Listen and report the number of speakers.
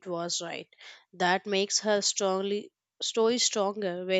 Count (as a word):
one